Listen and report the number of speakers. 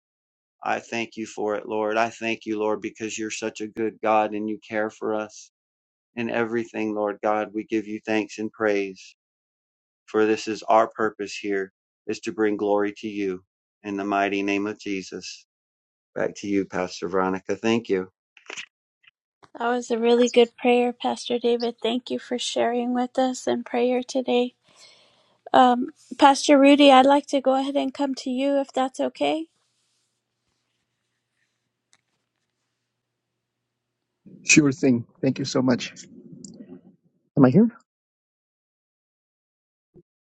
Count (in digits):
3